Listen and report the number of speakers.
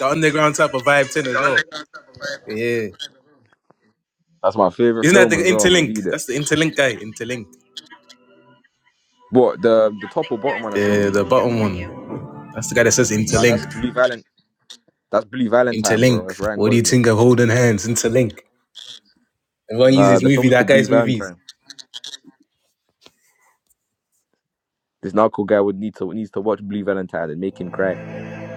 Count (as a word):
two